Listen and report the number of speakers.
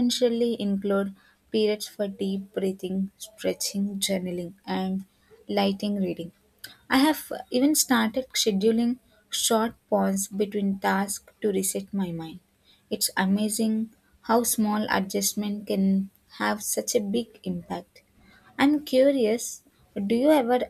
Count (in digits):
1